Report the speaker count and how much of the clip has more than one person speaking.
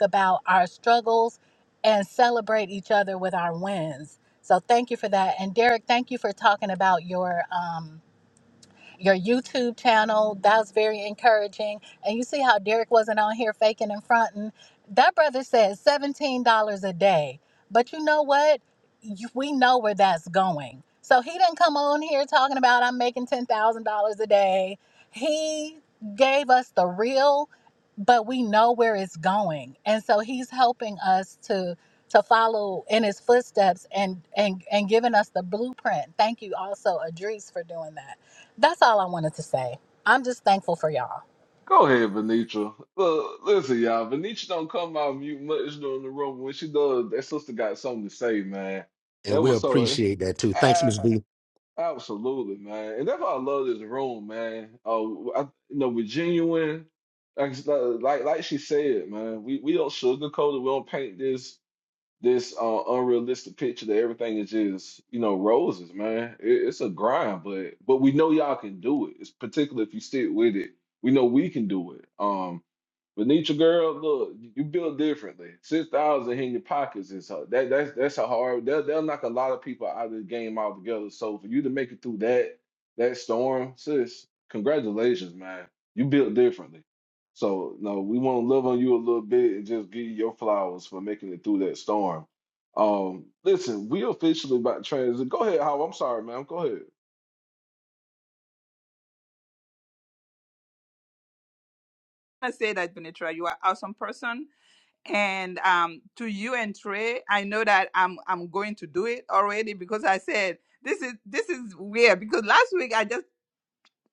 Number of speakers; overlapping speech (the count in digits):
4, about 1%